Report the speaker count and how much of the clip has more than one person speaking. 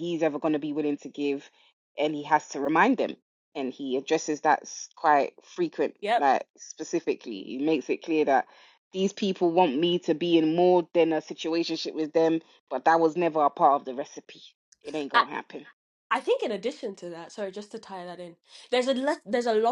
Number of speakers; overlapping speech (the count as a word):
two, about 1%